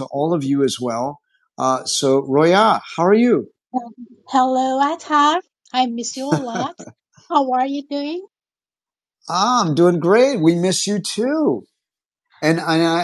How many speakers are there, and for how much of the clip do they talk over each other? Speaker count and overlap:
2, no overlap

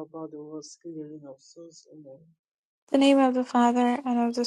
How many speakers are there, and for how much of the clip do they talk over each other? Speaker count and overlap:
2, no overlap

